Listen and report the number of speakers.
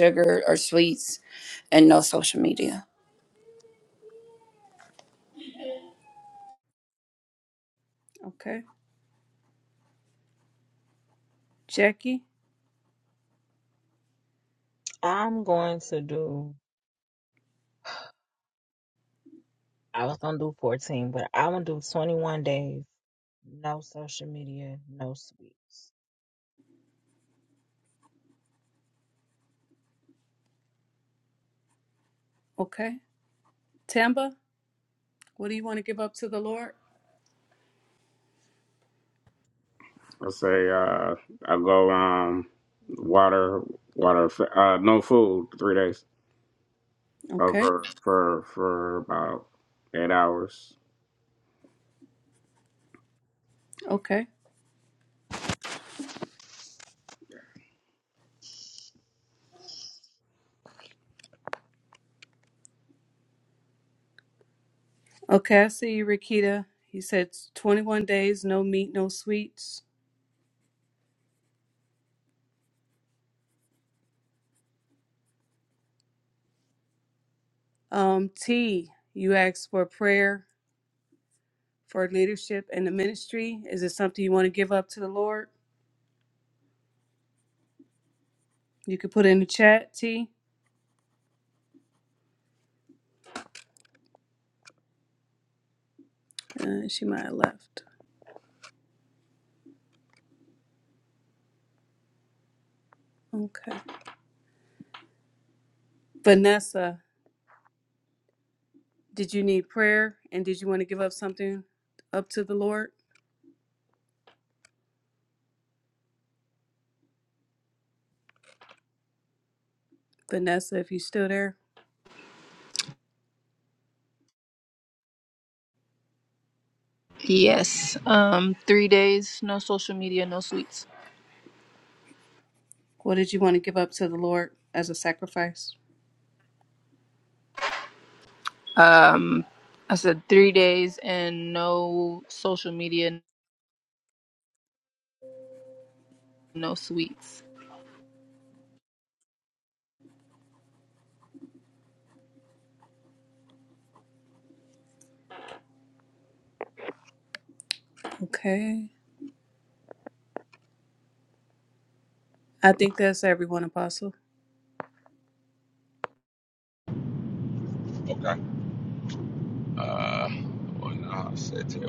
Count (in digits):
6